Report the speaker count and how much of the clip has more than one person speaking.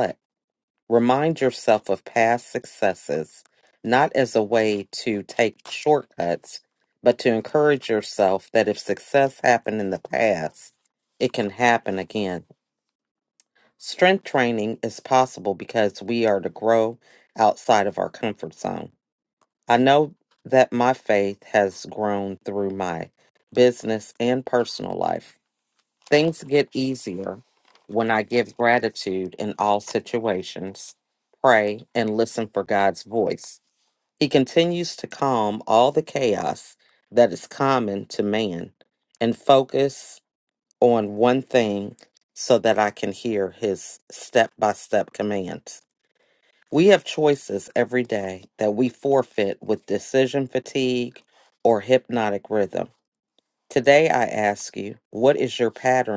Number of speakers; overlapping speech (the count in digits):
1, no overlap